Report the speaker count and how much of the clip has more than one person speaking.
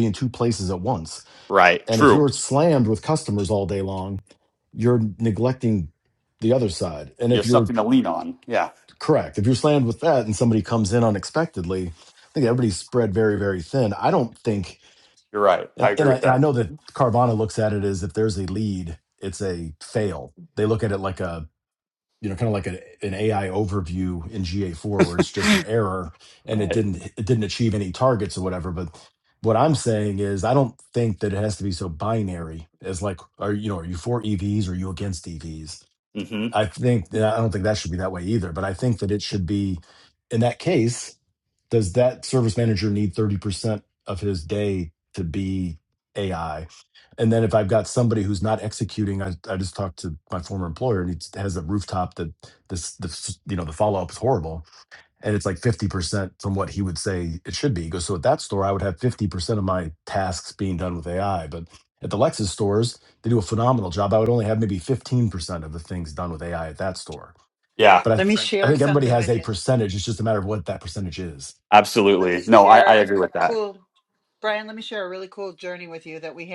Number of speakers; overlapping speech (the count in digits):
3, about 5%